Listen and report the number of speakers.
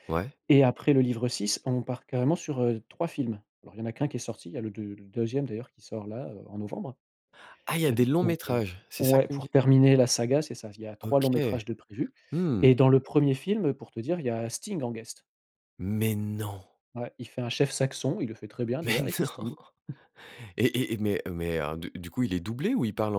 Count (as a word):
two